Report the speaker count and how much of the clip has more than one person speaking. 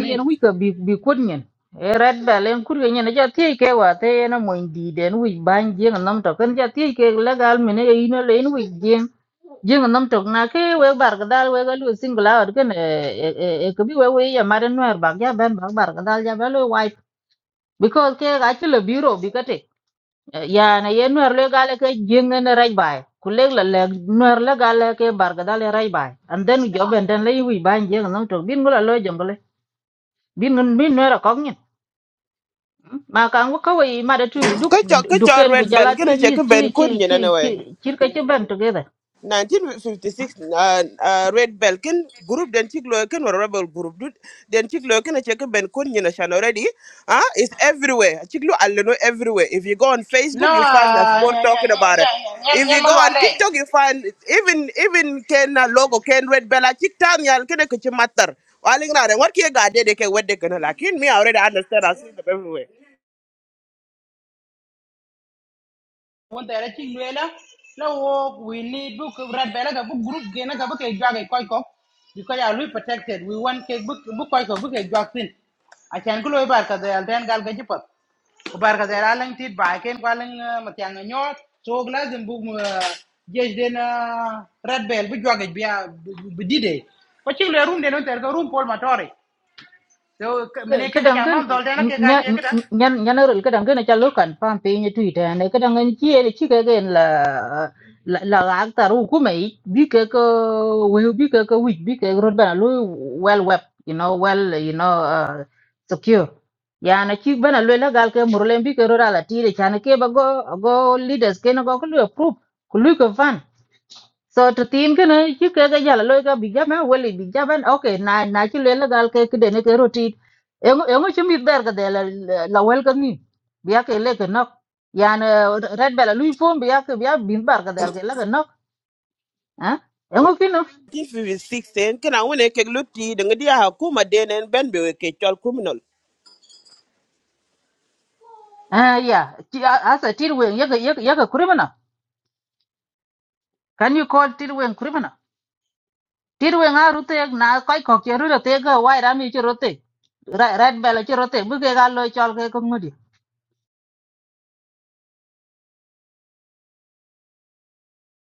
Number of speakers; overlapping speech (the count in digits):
3, about 4%